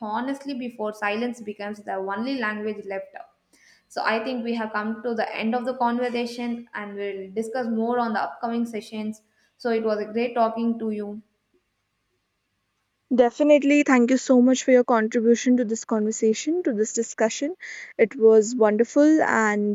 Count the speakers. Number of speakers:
2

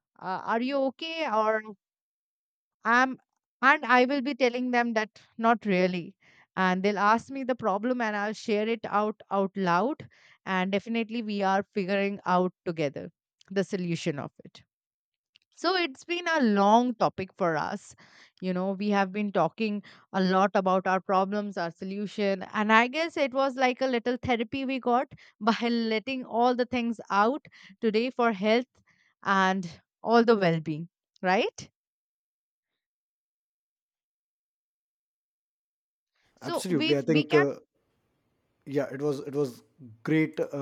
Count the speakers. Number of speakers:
2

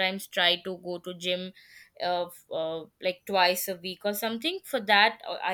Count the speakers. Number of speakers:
1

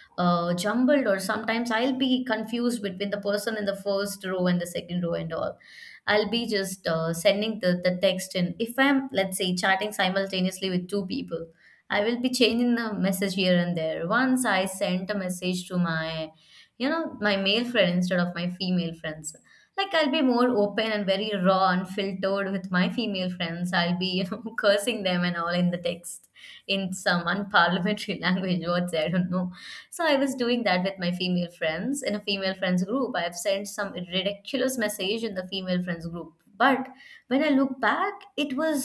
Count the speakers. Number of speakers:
1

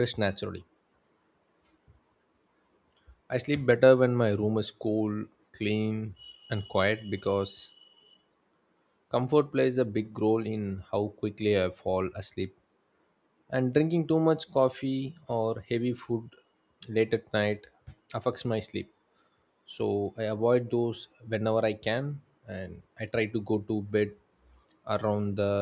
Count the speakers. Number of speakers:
1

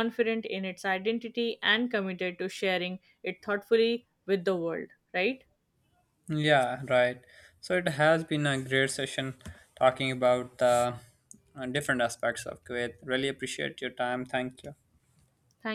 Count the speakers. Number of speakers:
2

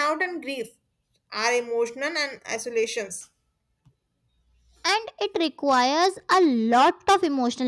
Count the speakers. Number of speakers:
2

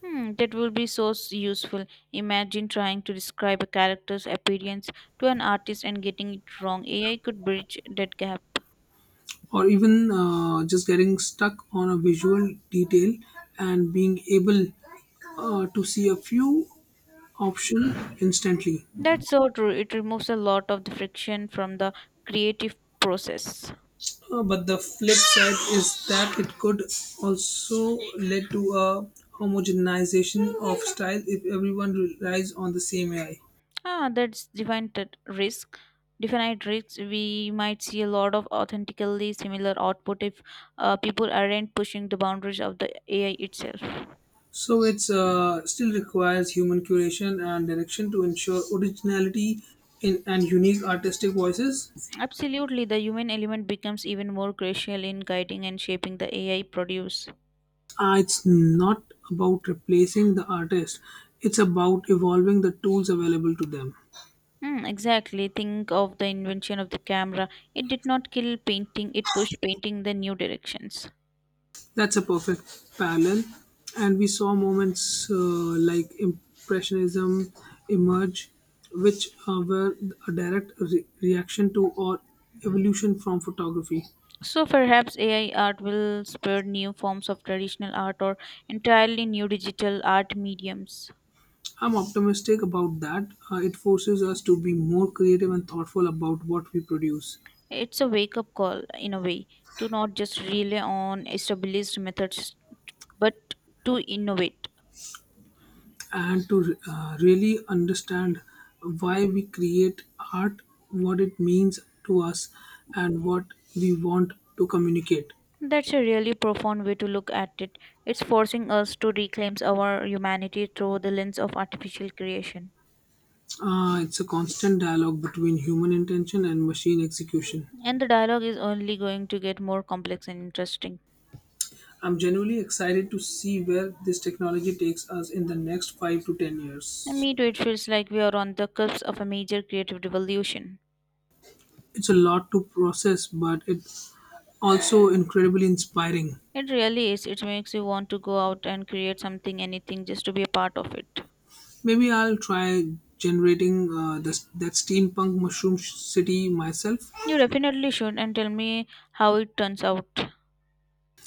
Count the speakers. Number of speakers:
2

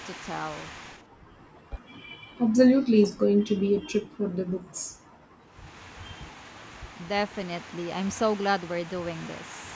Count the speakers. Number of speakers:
2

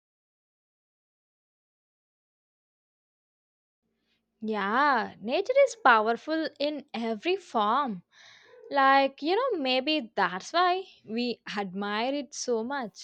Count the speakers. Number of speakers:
1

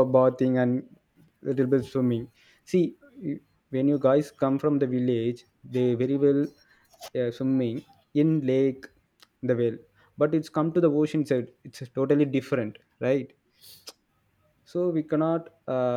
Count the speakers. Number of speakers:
1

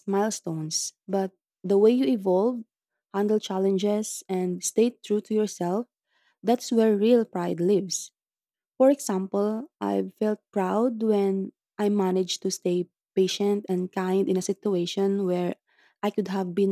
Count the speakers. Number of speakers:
1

